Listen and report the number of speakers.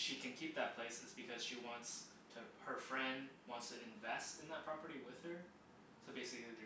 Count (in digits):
1